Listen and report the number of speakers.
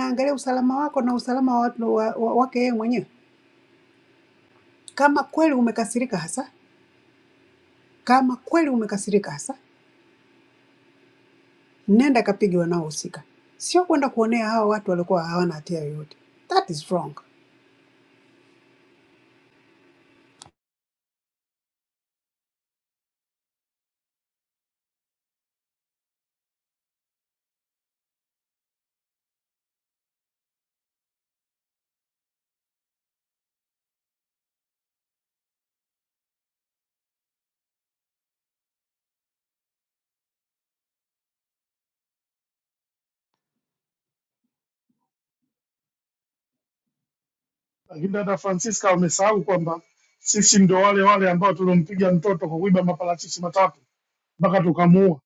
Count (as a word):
two